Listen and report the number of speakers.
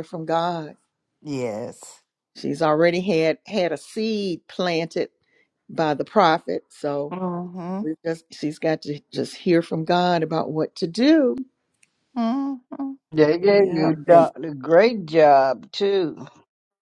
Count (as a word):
three